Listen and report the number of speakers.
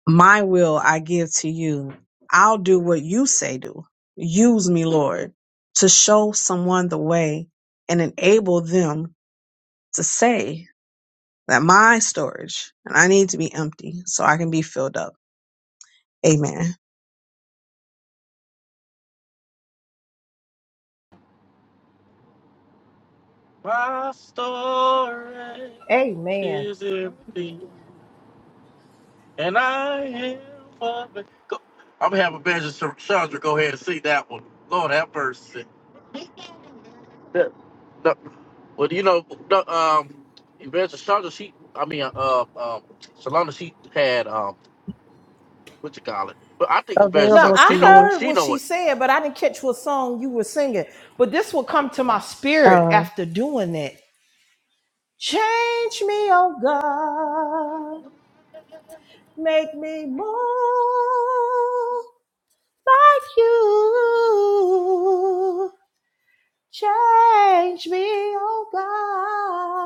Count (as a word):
three